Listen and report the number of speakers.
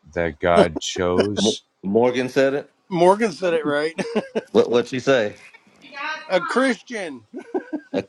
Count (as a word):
three